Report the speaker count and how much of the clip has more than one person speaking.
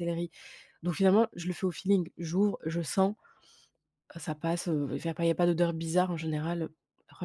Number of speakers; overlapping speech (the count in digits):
1, no overlap